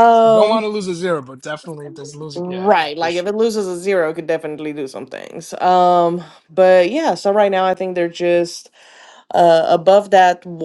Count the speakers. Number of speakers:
two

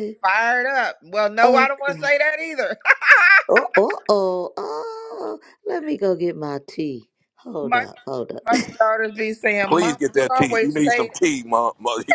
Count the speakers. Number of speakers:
three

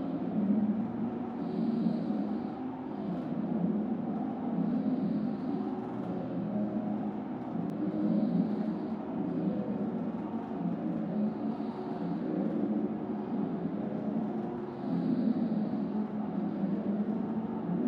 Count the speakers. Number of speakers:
zero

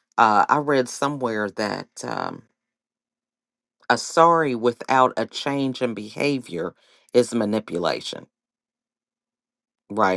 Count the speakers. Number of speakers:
one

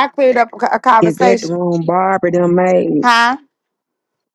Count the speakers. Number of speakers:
two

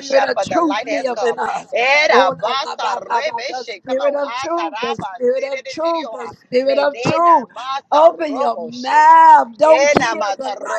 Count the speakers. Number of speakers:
two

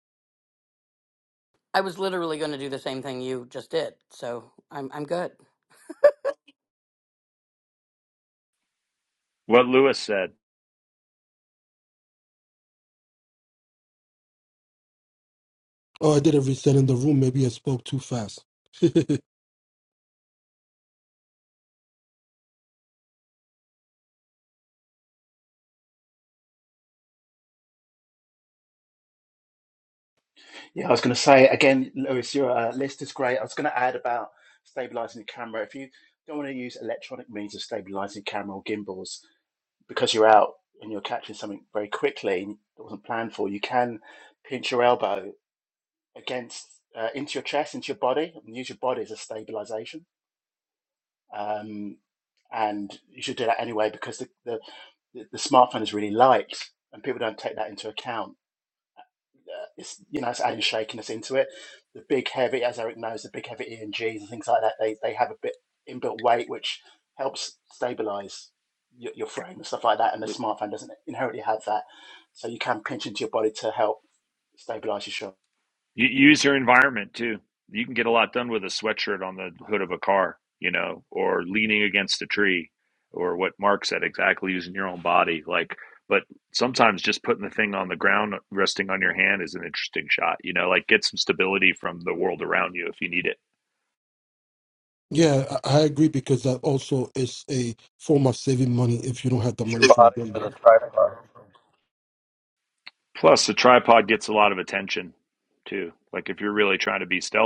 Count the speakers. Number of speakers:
five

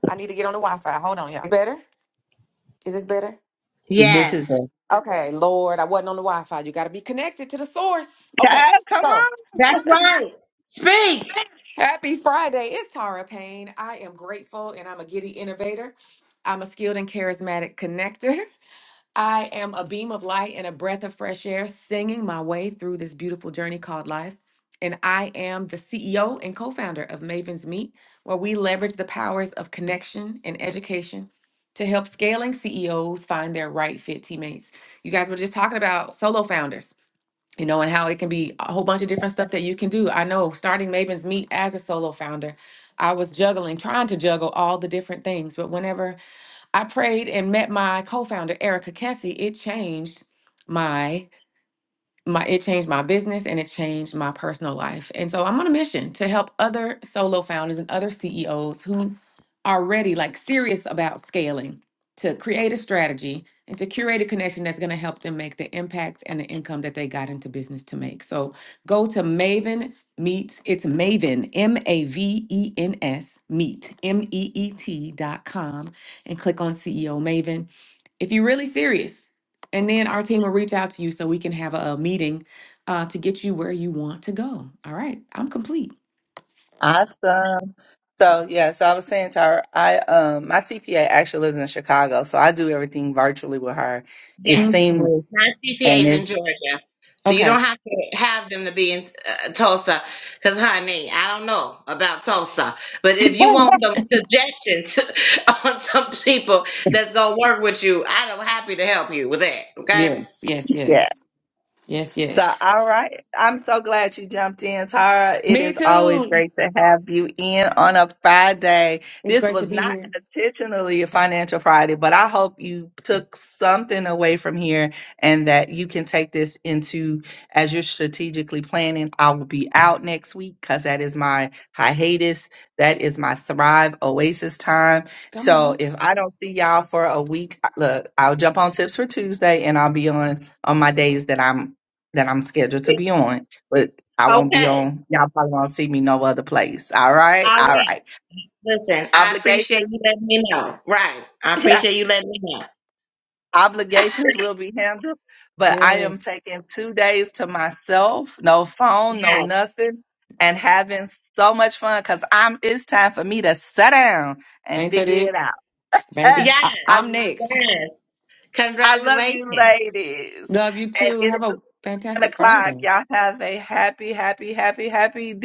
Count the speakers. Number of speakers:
three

